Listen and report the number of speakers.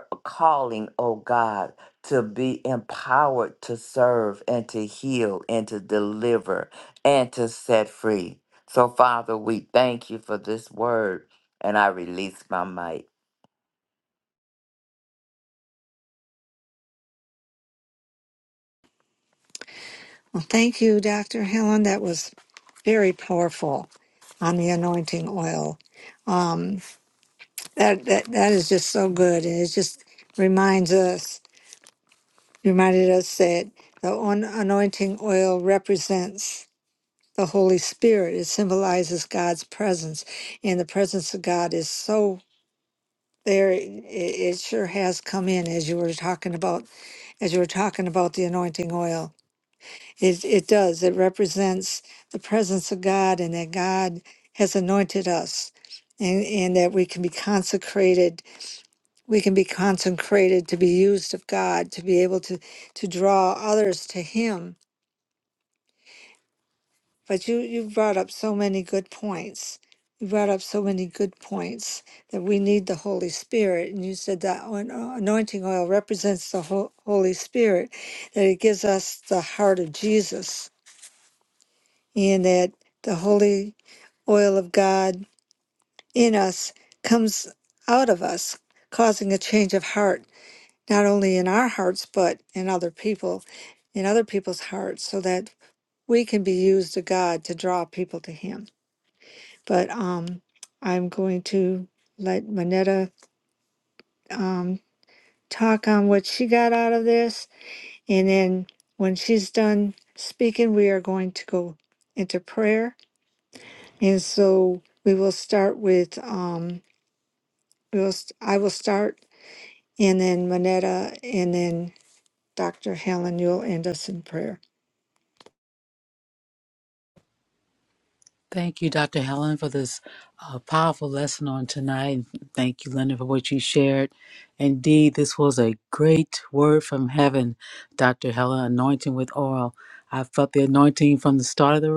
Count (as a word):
three